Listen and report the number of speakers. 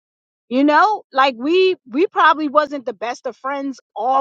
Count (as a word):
one